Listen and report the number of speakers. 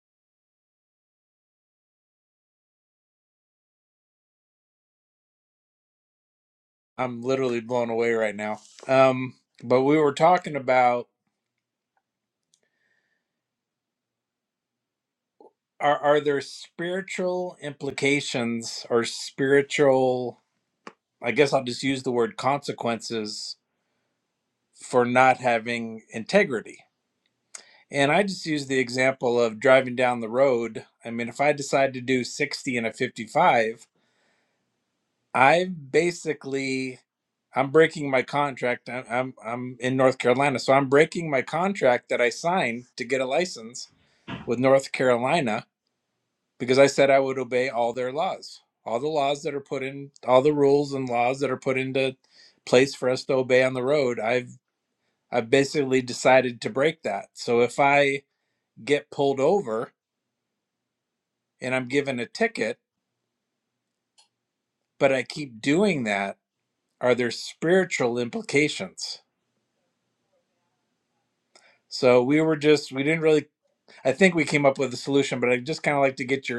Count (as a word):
one